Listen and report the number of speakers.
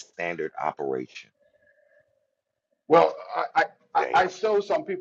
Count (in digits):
2